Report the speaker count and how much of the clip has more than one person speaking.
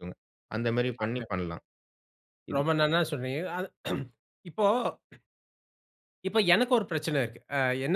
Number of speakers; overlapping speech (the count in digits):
2, about 2%